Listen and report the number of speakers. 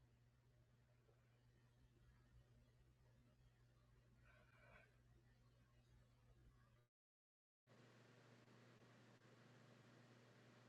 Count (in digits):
0